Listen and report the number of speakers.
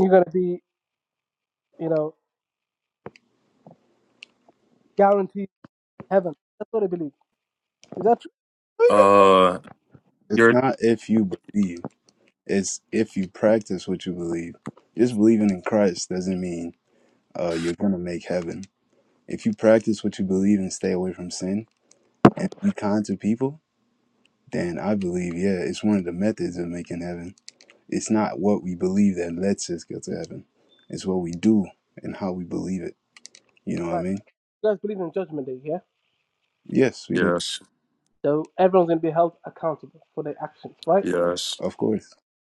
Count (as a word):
three